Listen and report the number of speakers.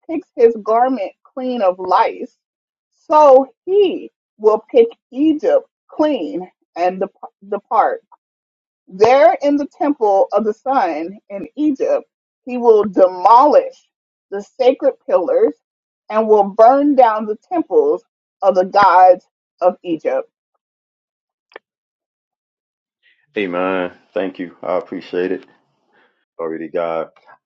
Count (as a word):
two